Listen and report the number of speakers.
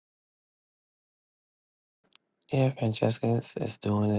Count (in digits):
1